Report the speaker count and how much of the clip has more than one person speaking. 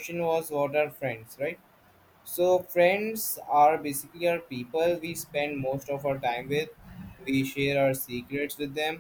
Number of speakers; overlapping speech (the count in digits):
1, no overlap